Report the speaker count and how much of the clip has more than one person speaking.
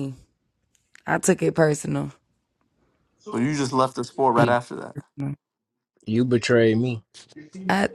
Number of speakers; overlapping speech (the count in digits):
3, about 3%